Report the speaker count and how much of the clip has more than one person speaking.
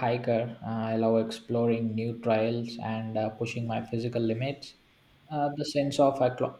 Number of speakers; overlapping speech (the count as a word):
one, no overlap